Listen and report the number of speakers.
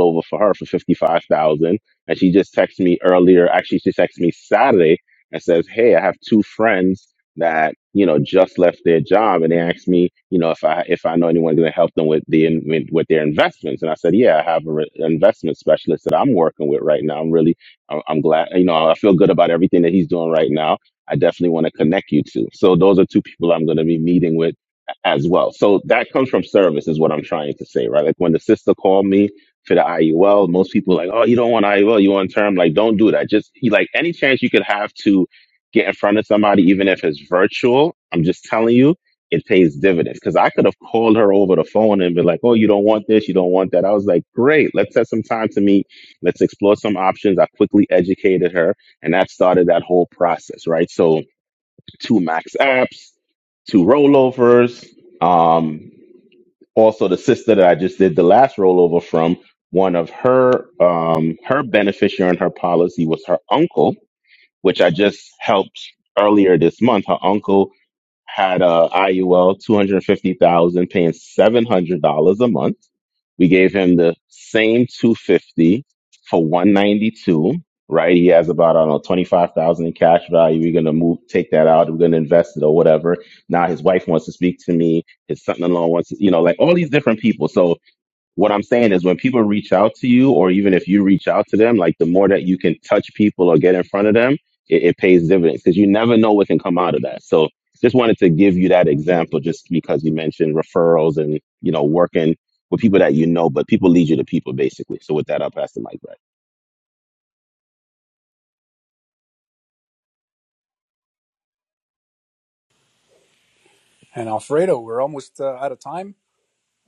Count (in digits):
2